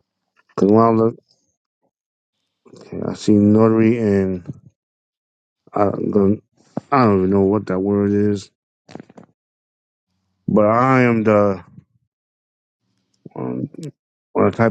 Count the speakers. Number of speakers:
one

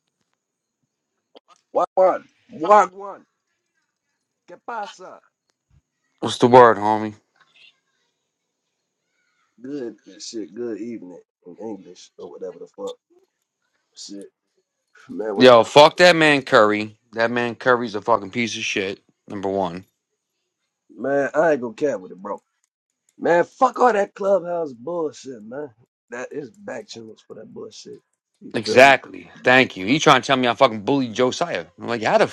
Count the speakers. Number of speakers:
two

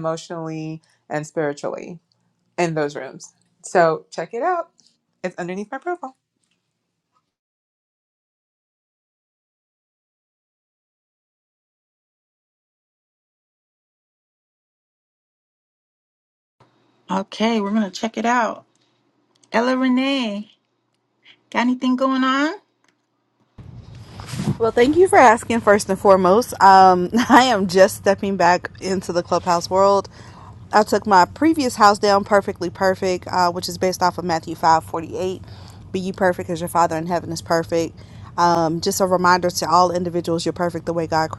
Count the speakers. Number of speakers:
three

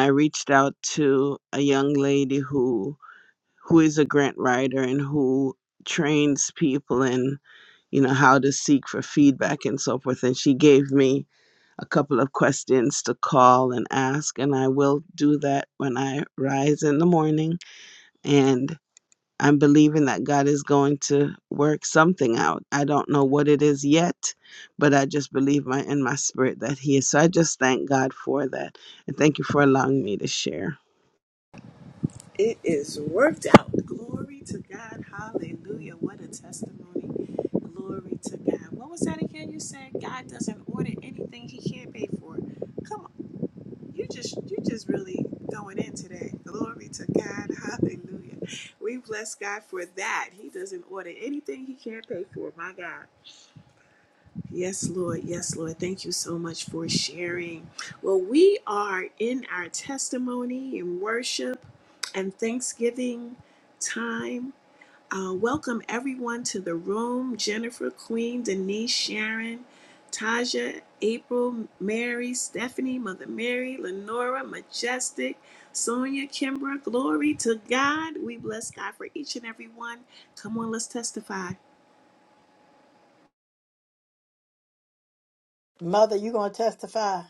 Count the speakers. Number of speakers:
three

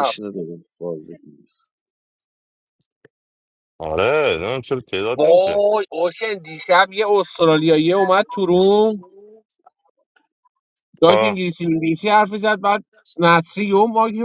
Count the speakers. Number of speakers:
three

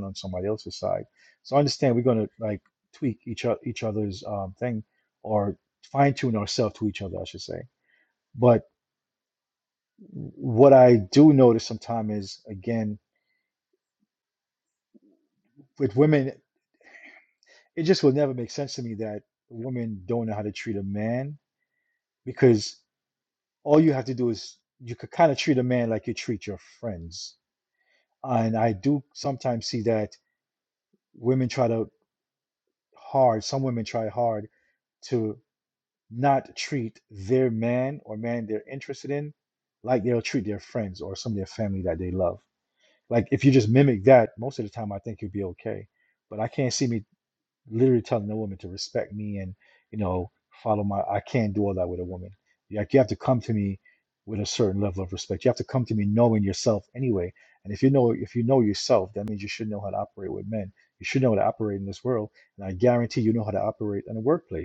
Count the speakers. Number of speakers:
one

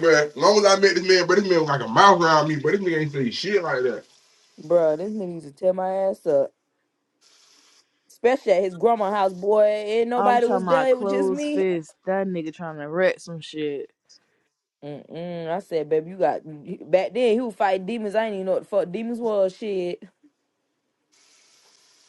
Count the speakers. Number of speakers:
three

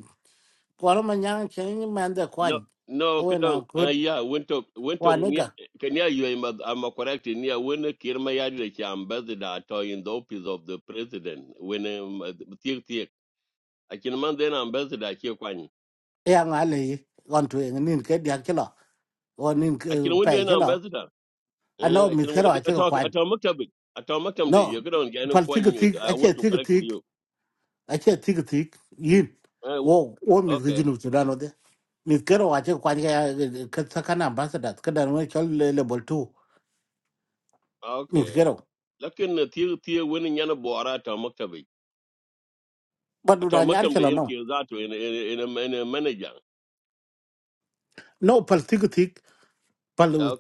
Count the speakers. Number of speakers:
two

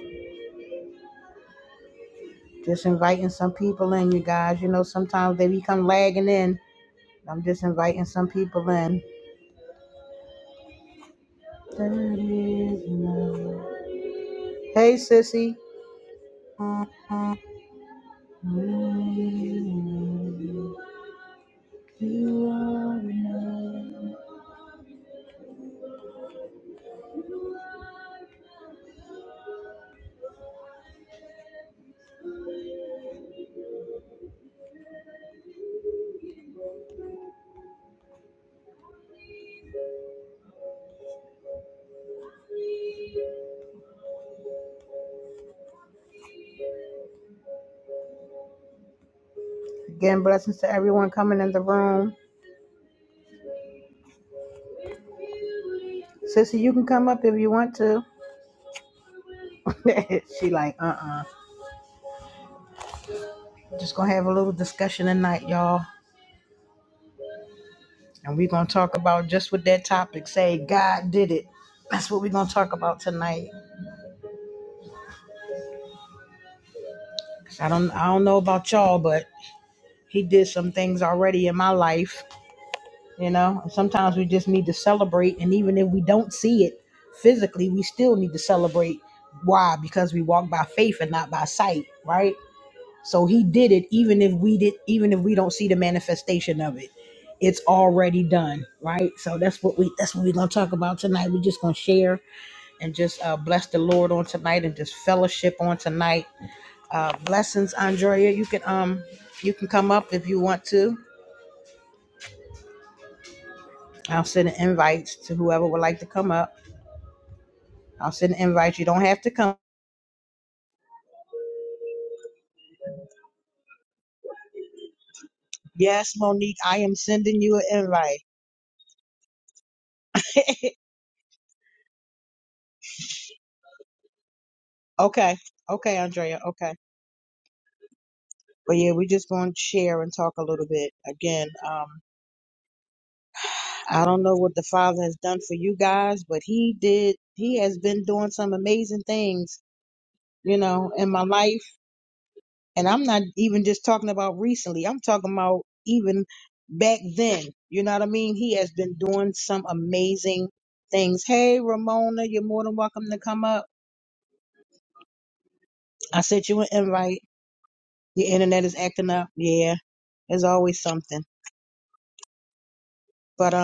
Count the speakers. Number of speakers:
one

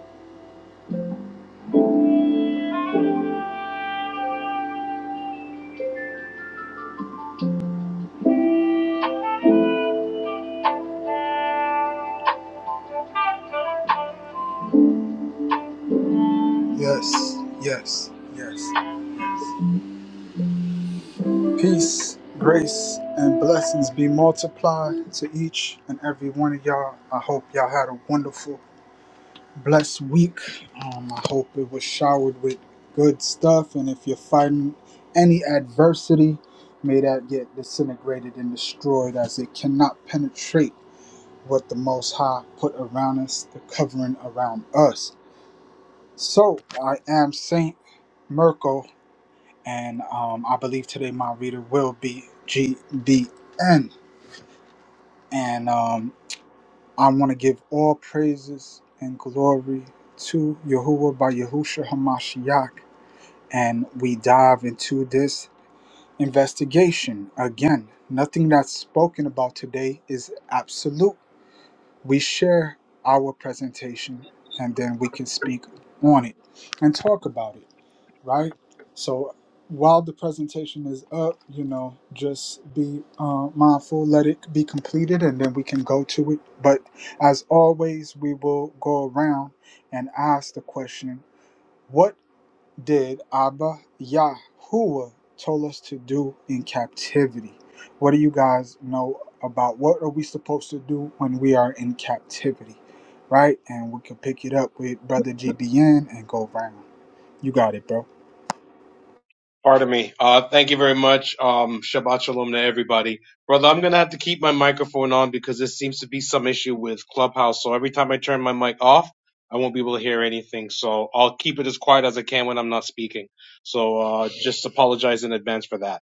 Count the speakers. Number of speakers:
two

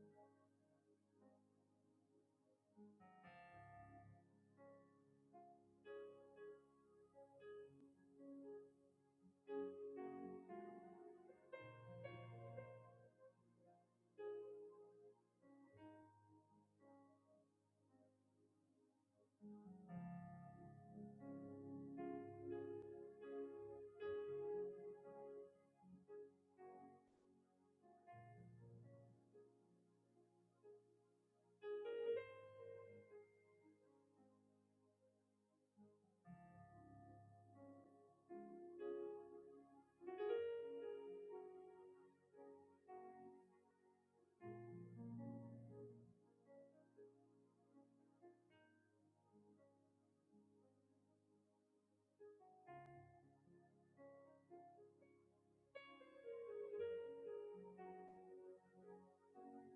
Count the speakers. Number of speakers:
zero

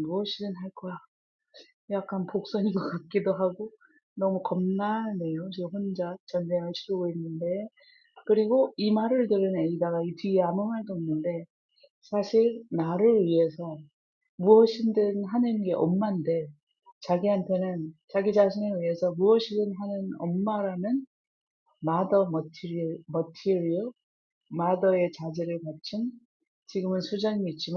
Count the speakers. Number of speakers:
one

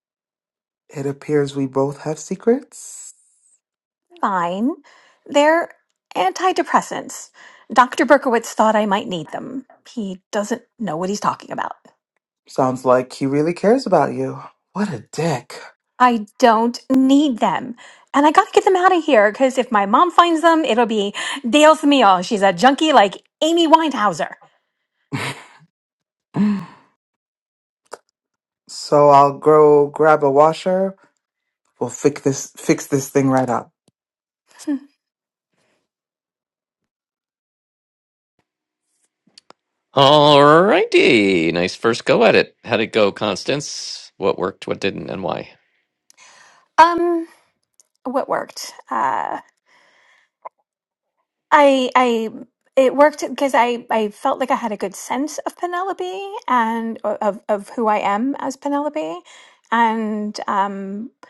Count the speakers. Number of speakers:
three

